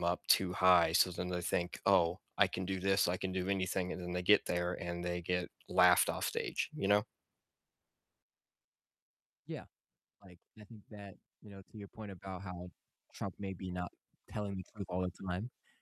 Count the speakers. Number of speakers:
two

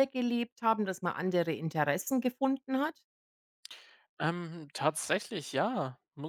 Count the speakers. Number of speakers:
two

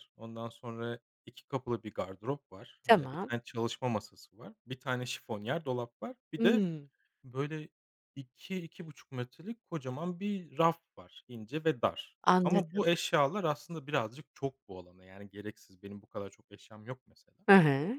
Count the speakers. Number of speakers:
two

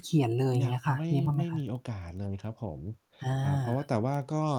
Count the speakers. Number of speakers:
two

